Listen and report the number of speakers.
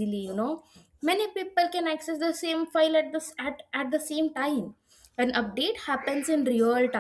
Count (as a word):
one